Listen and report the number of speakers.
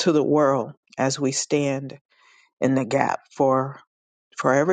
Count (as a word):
one